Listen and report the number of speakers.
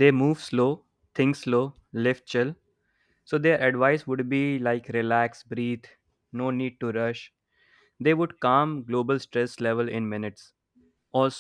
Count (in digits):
1